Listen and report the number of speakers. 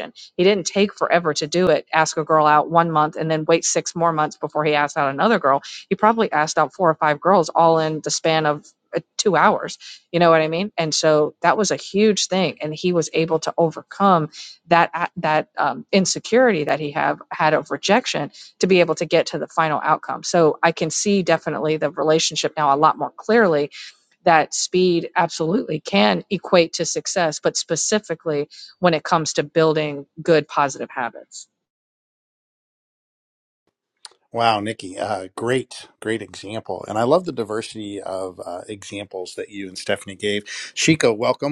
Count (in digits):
2